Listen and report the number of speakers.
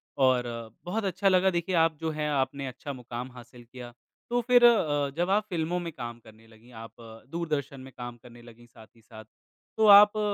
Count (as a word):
one